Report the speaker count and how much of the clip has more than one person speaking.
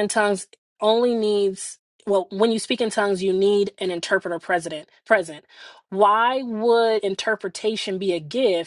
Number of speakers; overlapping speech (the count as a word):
one, no overlap